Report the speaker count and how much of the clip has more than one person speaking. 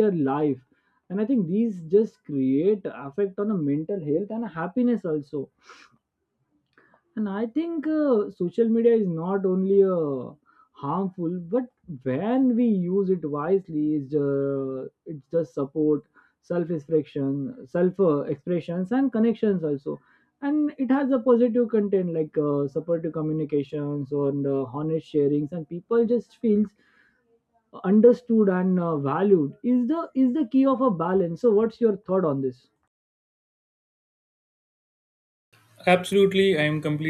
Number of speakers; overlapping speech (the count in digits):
2, no overlap